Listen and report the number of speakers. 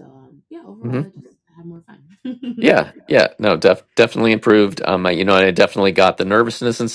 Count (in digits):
2